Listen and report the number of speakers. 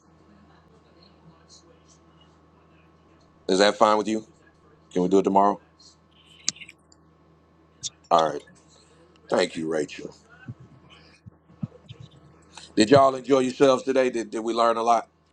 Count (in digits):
1